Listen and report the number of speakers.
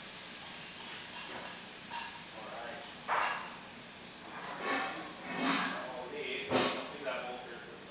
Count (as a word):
two